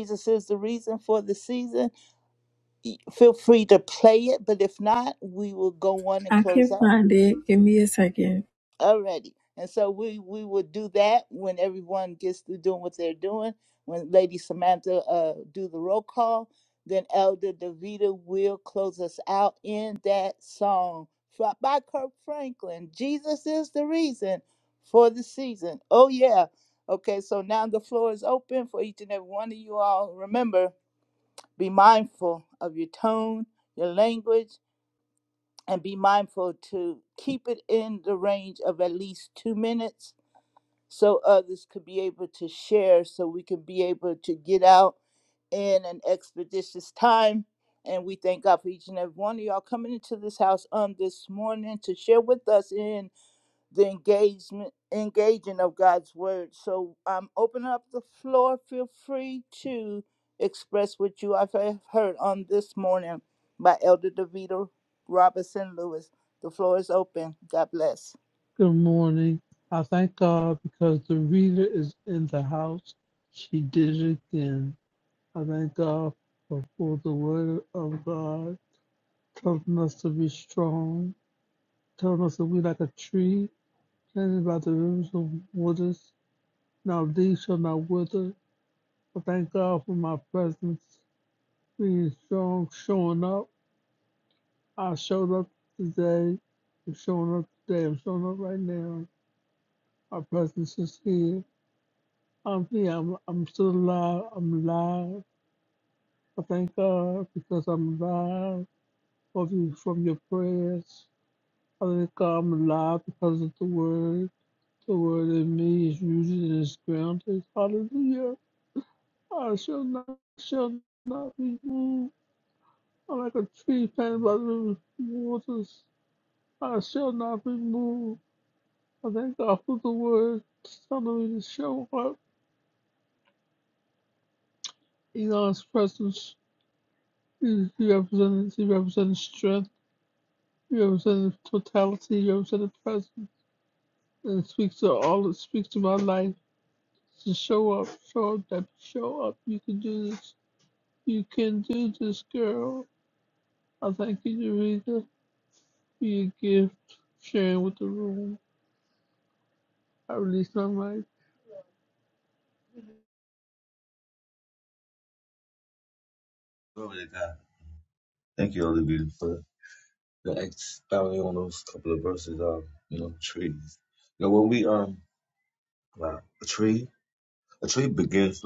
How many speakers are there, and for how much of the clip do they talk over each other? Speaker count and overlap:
four, under 1%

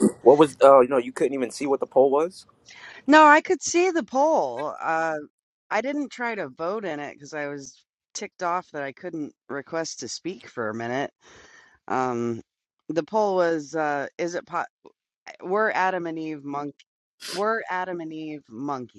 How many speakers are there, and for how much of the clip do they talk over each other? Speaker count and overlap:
two, no overlap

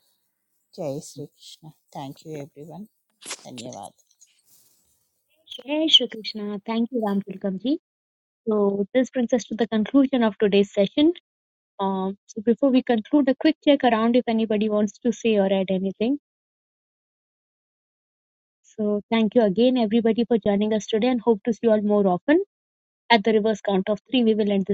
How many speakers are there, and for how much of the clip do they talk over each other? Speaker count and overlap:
two, no overlap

